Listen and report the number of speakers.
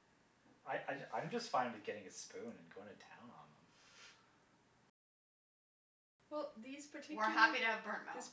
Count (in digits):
3